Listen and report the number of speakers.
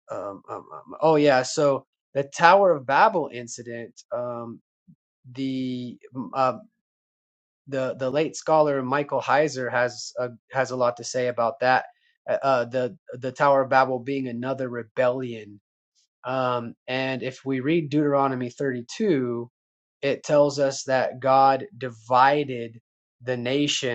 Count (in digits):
1